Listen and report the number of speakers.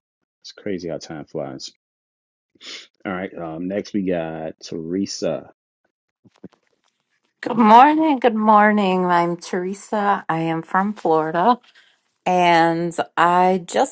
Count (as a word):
two